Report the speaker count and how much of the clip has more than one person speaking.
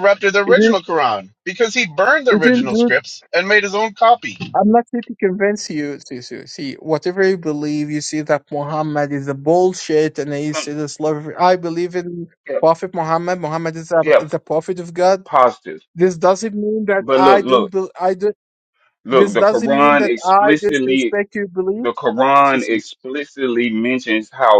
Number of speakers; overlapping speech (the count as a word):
three, about 18%